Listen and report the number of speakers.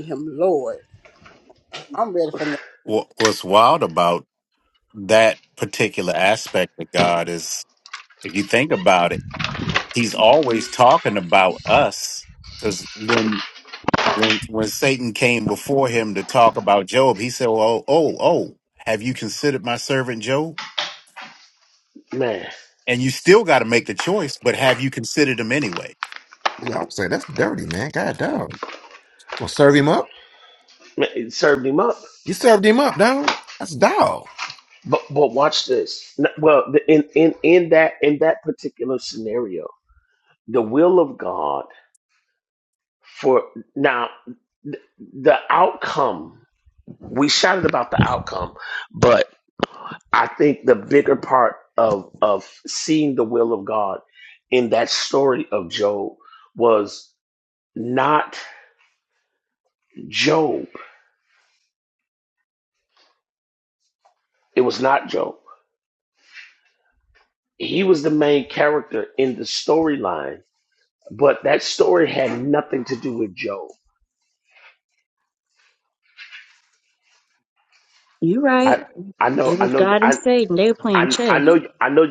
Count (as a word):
five